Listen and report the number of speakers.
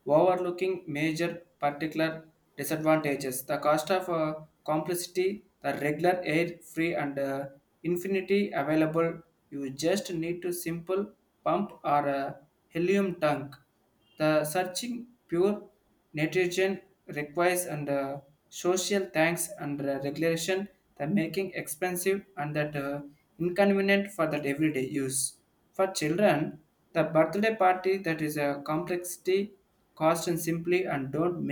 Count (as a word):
one